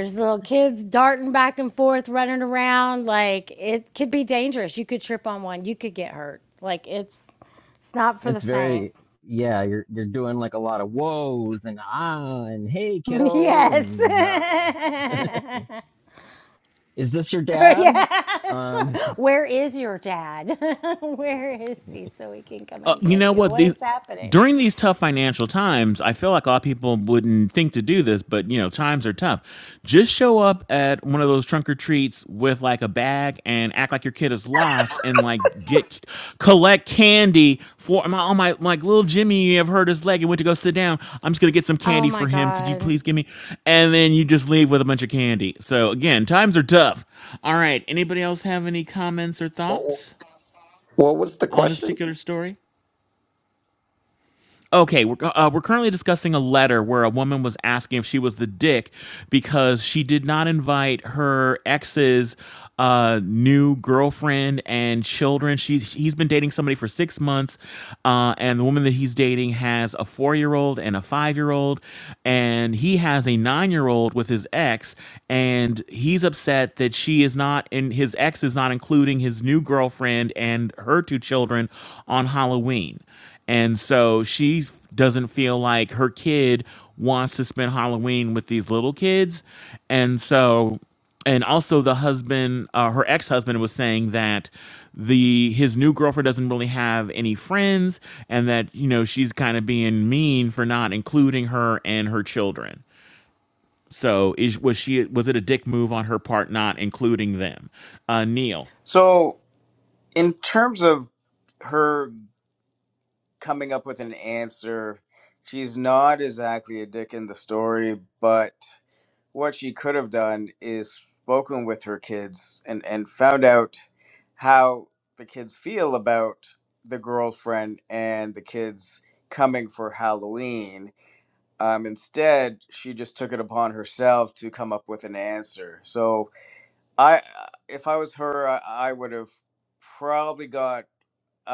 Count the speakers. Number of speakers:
5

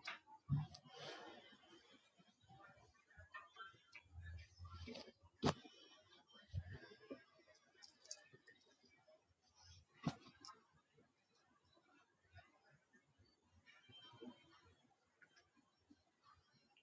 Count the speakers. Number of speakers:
0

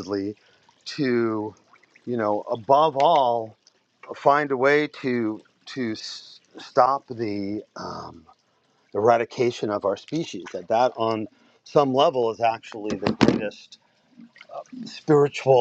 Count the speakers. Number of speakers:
1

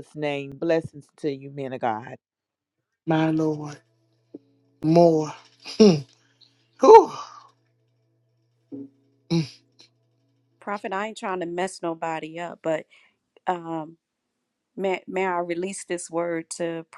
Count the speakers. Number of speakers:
3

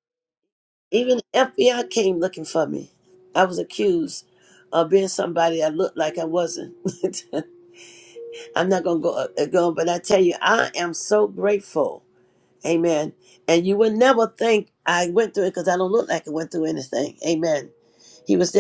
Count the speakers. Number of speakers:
1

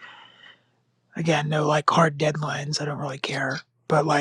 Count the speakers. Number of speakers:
1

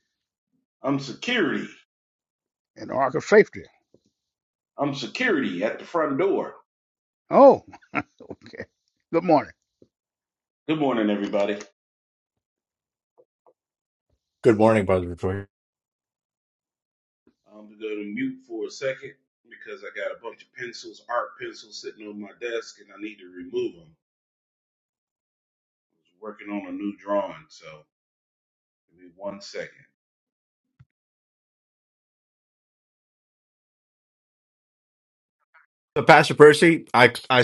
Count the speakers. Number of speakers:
3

